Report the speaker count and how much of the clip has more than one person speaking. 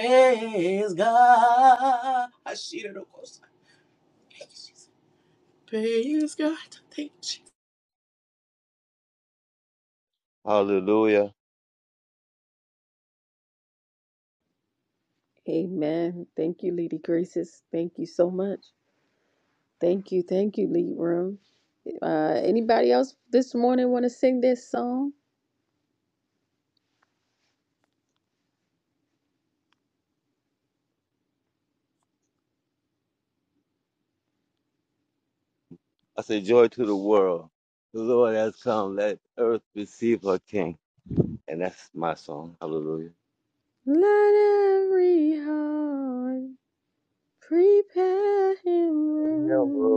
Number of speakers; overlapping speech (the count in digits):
3, about 1%